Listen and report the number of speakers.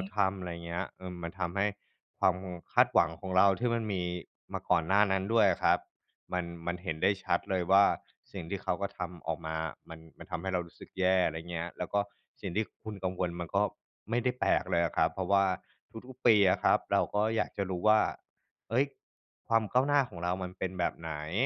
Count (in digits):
1